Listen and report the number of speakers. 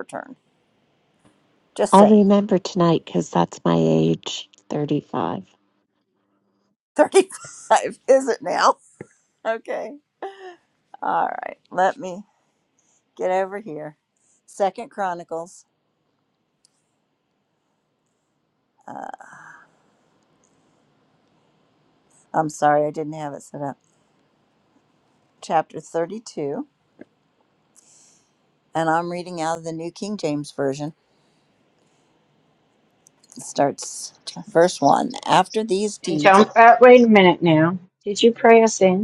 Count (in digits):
3